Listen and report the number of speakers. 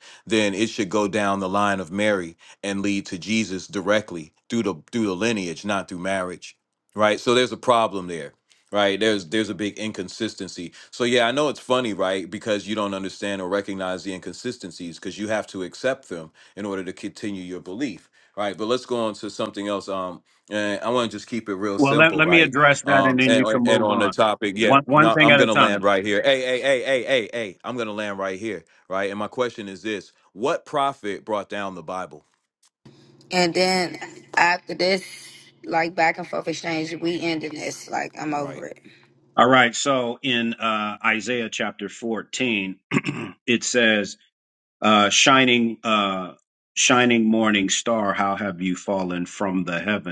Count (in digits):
3